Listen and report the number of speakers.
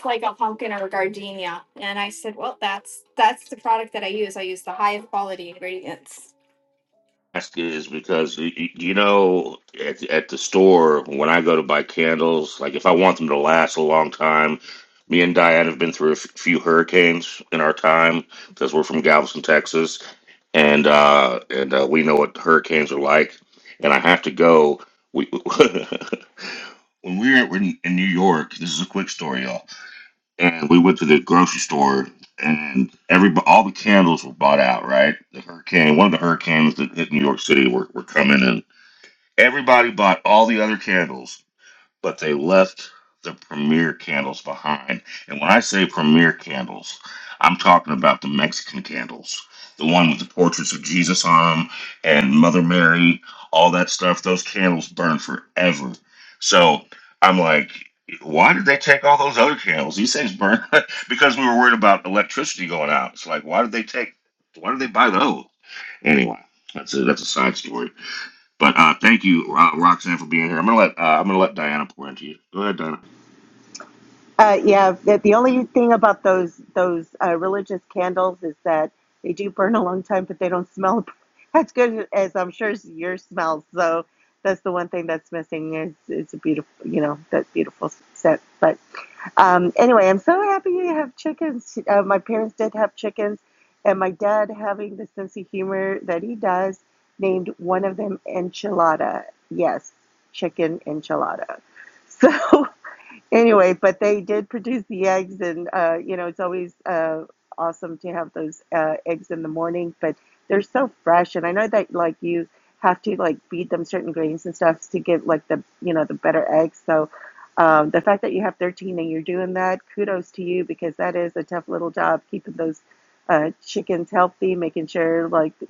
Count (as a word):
three